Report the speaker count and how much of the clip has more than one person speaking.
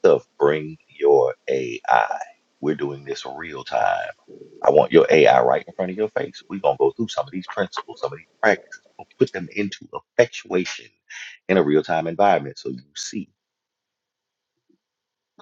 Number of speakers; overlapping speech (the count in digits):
1, no overlap